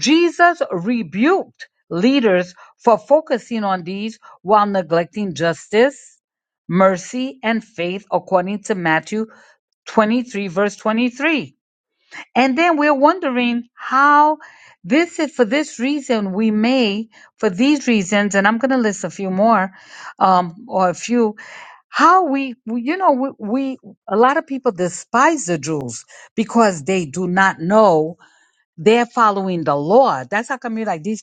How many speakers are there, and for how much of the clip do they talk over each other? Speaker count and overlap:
1, no overlap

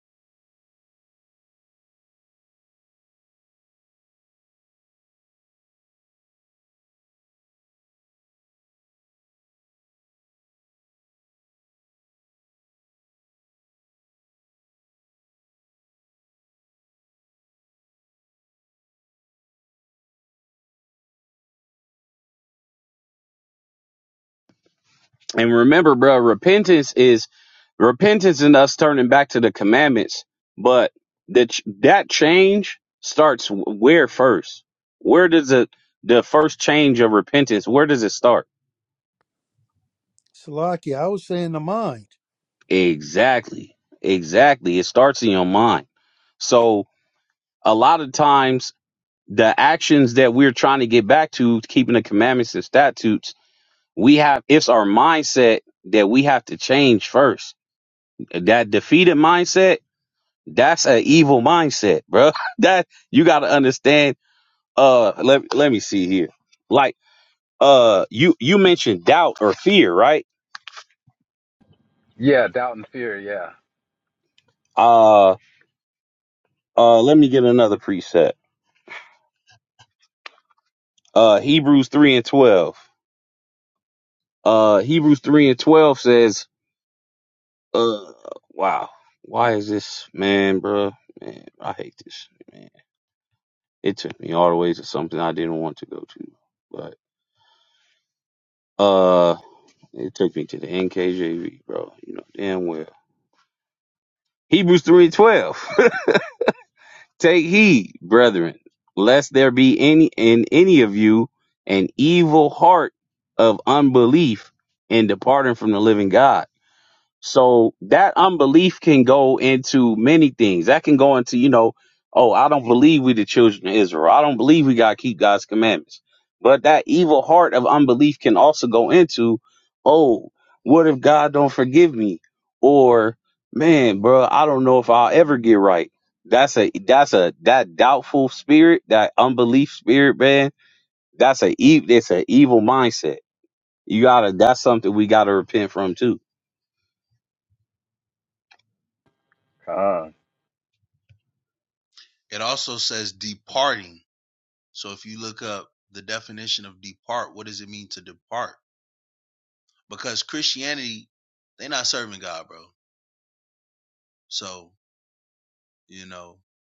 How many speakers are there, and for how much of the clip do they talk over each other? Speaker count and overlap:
4, no overlap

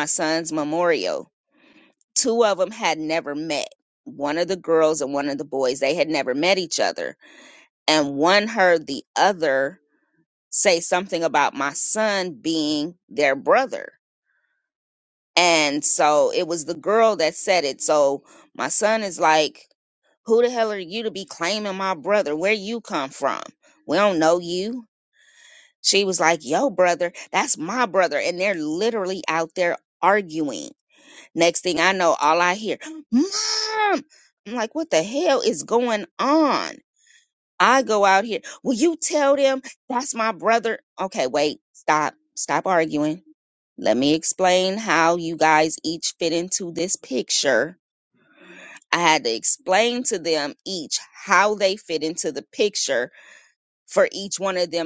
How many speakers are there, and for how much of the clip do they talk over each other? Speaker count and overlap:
1, no overlap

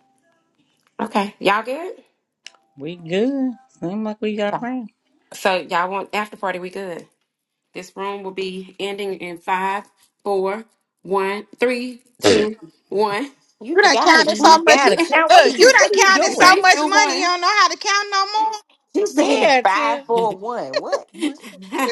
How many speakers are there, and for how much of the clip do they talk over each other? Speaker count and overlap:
4, about 19%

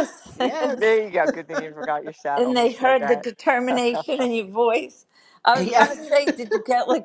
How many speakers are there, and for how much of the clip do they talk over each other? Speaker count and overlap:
3, about 21%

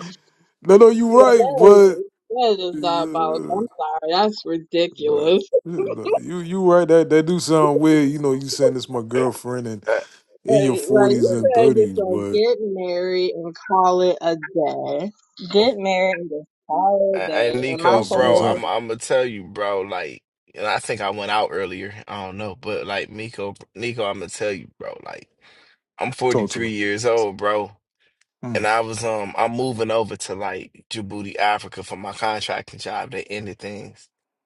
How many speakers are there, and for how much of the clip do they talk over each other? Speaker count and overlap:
3, about 18%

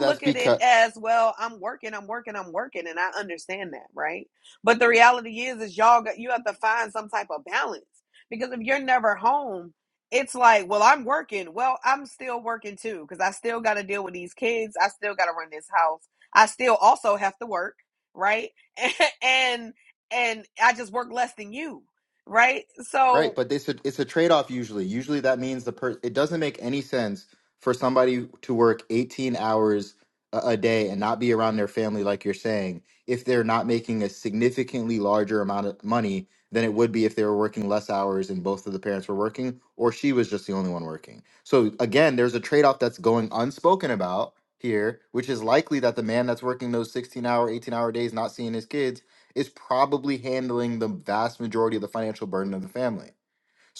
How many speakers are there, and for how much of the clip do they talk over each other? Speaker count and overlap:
2, about 2%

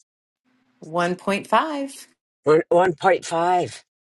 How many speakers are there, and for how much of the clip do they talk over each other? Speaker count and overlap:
2, no overlap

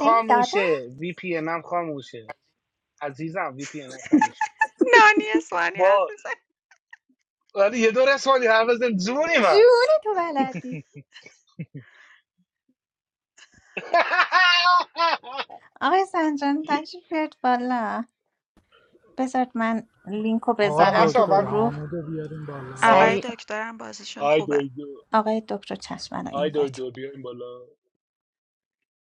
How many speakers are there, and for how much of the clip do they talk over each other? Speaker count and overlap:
4, about 13%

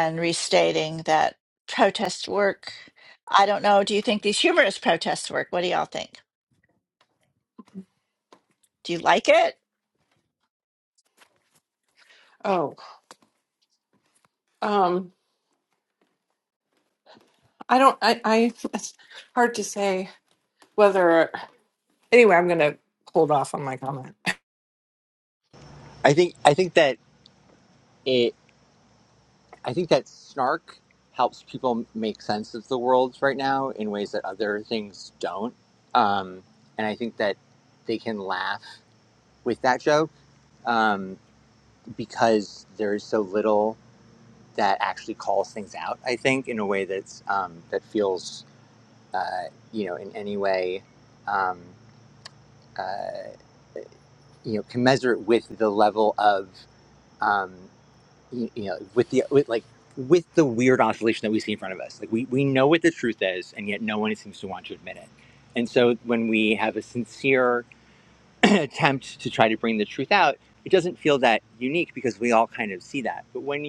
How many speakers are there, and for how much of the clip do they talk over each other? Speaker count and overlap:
3, no overlap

